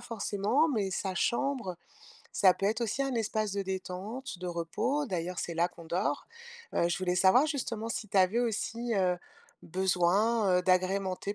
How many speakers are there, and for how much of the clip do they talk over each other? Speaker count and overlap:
one, no overlap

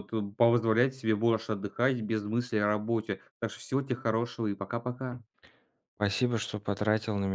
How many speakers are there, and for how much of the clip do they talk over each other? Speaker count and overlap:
two, no overlap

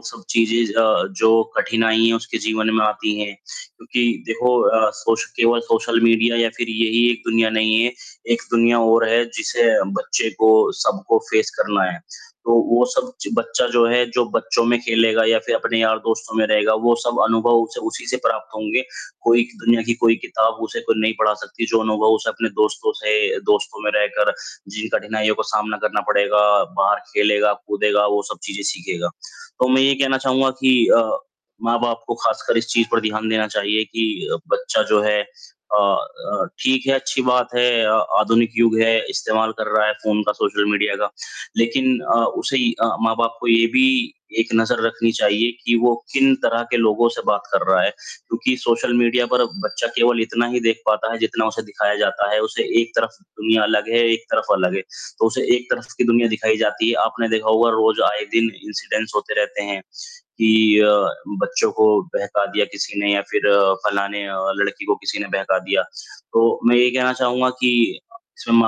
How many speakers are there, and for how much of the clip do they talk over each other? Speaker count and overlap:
one, no overlap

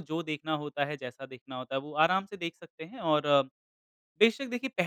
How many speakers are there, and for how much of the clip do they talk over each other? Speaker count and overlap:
one, no overlap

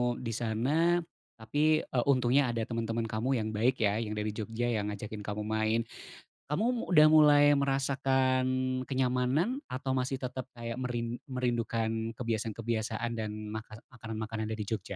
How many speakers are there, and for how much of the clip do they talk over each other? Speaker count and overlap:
one, no overlap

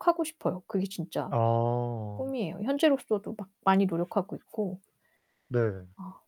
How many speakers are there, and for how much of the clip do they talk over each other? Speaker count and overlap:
two, about 1%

